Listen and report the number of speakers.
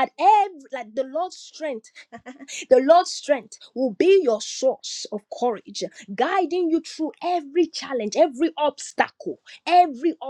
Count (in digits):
1